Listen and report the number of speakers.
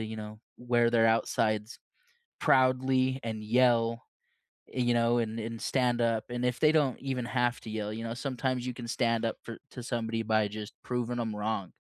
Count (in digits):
1